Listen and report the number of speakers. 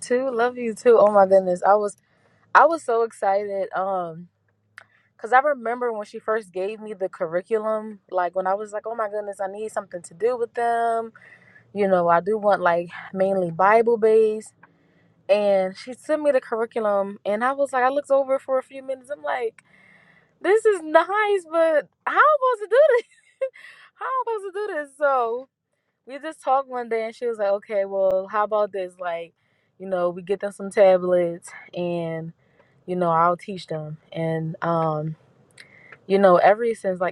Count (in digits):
1